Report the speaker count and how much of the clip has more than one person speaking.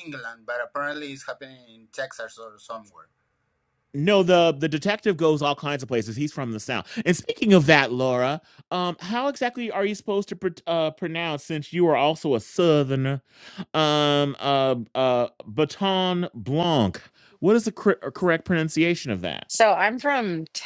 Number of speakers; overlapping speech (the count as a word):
three, no overlap